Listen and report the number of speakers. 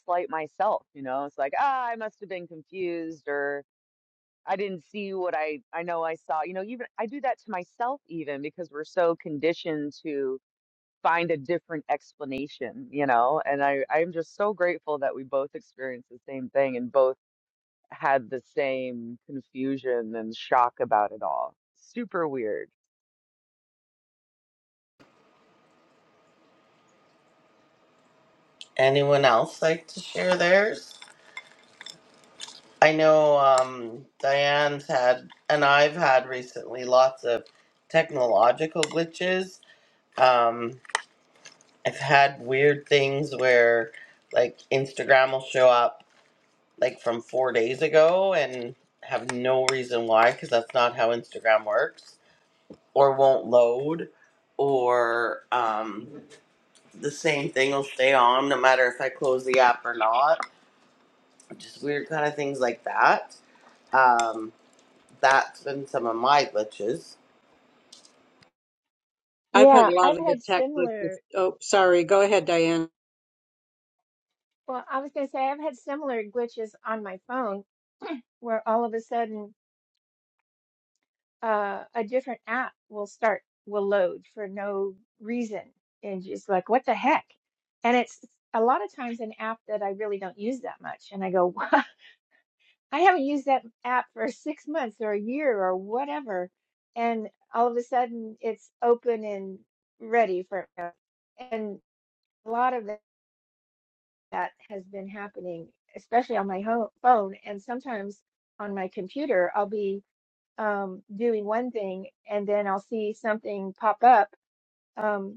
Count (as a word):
four